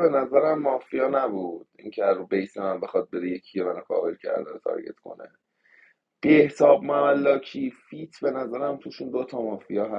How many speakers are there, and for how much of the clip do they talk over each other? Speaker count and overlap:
1, no overlap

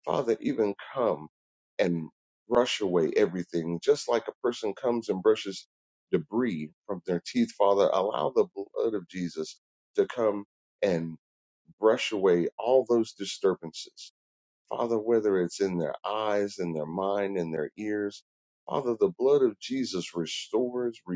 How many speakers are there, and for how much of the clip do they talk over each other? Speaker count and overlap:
1, no overlap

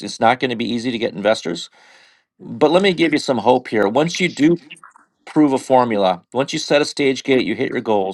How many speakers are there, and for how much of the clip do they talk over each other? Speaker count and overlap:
1, no overlap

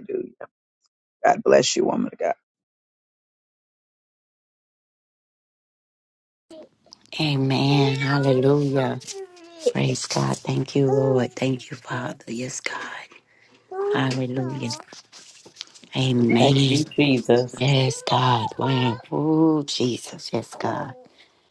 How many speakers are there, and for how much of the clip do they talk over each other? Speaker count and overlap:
3, about 3%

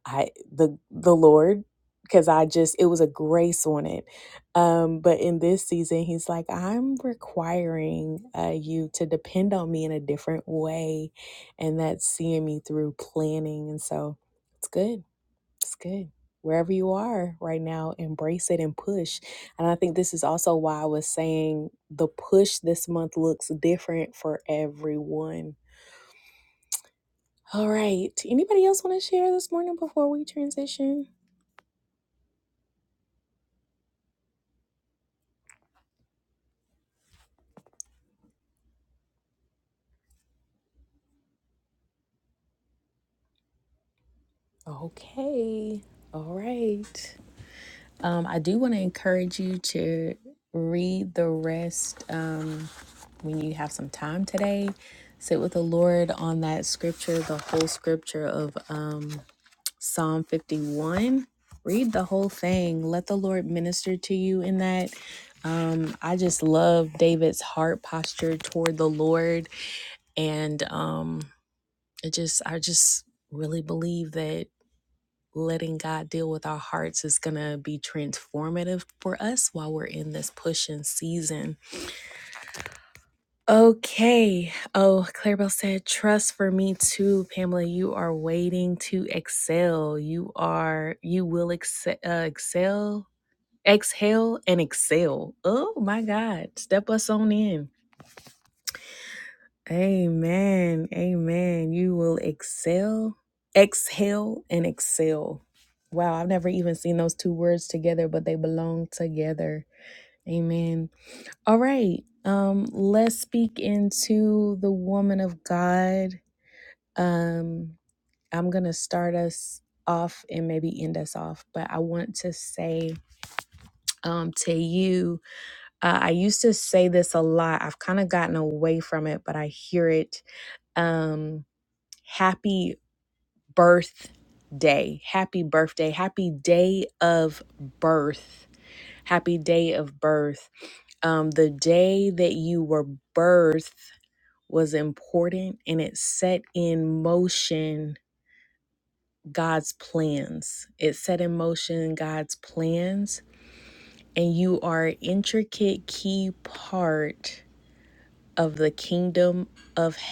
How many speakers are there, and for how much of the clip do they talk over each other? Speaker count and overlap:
1, no overlap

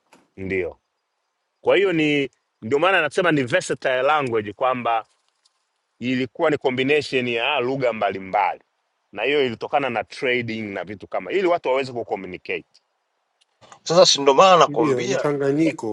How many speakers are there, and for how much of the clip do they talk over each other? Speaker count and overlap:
3, about 4%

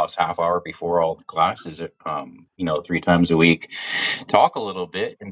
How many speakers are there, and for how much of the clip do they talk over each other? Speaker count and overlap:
1, no overlap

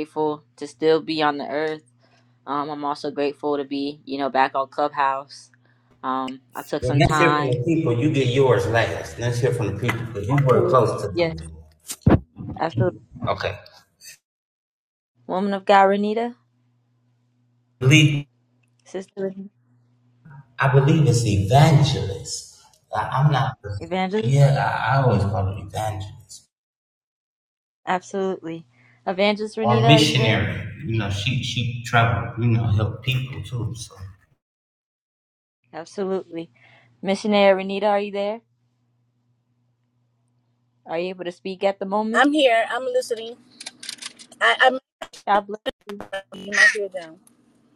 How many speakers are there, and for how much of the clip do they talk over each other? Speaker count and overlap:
3, about 6%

